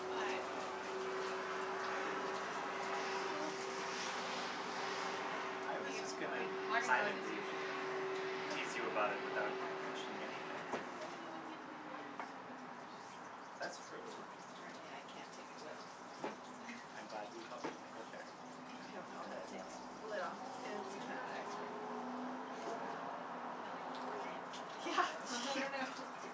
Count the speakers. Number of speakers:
four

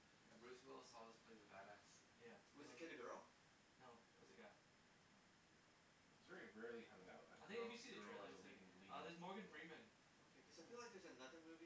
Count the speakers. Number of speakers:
four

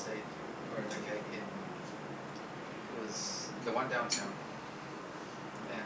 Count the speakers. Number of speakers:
one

